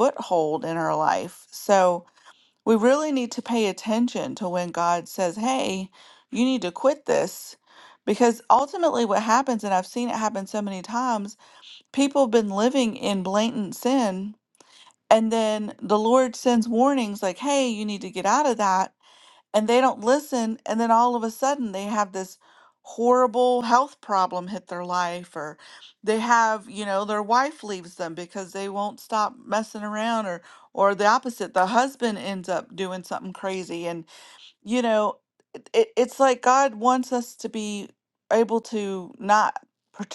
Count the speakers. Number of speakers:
1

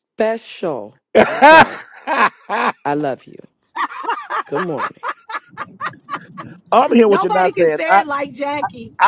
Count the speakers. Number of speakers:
3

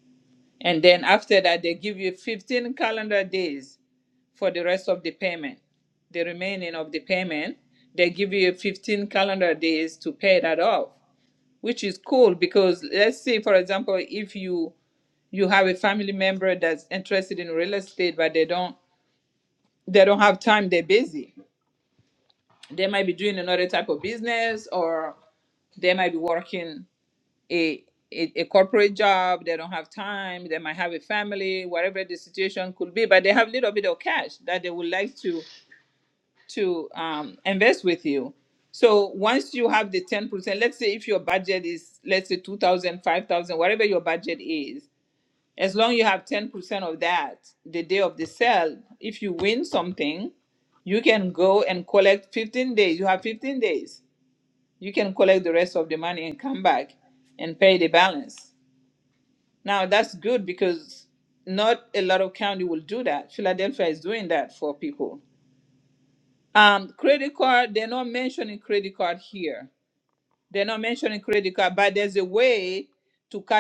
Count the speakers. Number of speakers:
1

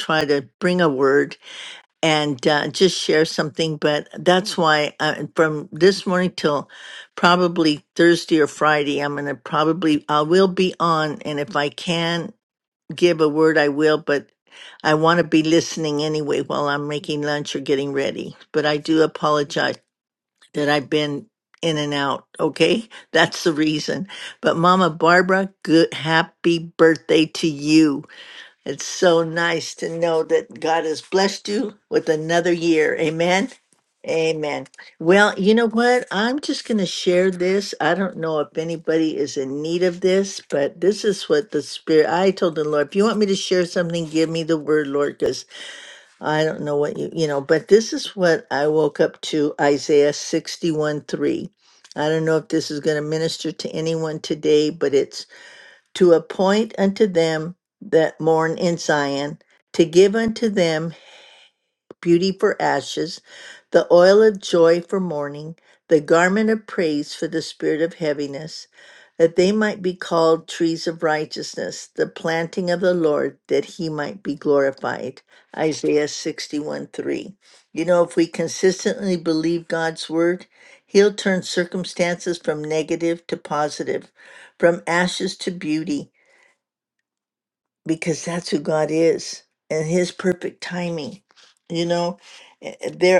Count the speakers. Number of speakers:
1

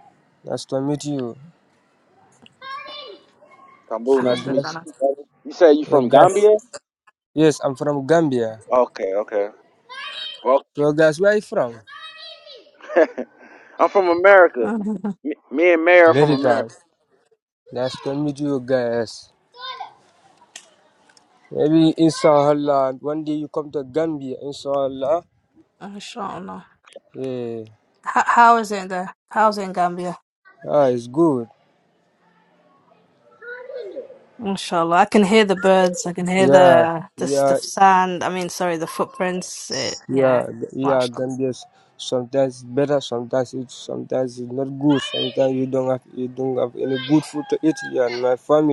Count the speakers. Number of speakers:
3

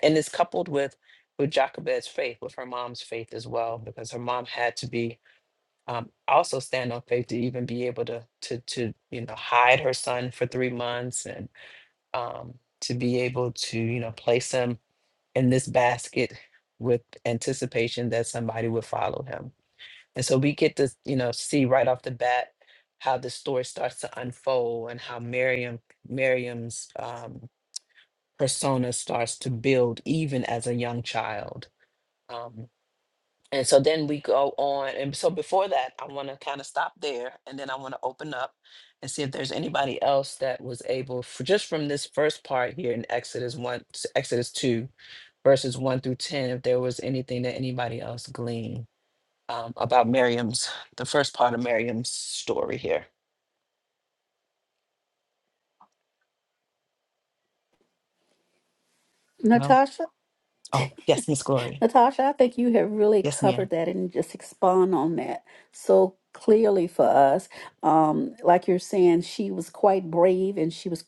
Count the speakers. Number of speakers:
2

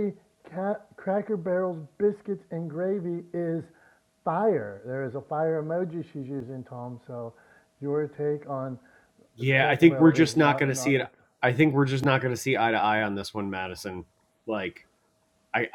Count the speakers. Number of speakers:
2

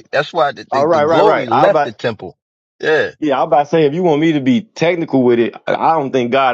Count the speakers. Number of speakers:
2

